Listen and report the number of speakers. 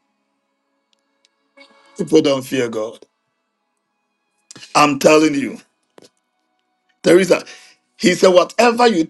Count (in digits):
1